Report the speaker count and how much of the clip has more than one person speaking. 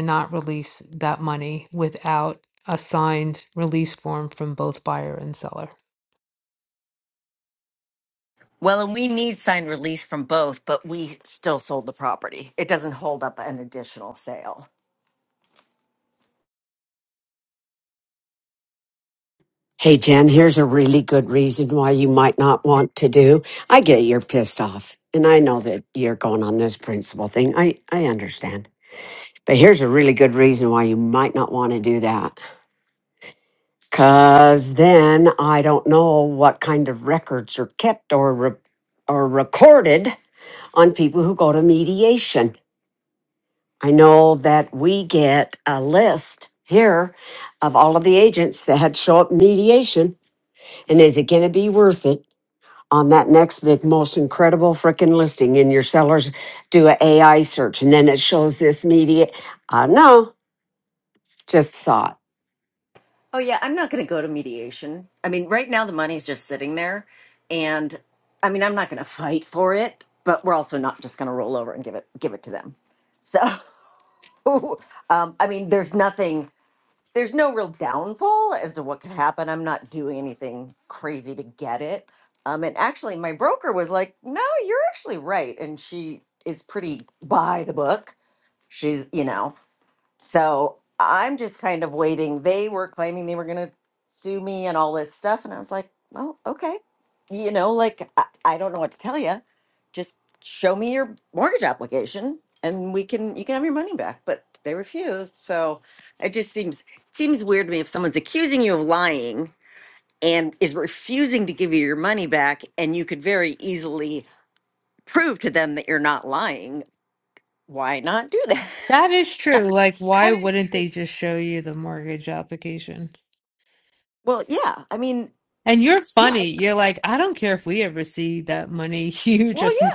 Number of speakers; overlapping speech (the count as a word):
three, under 1%